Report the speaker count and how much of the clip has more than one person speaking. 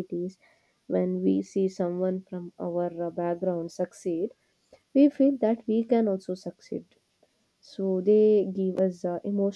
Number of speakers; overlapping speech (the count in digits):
1, no overlap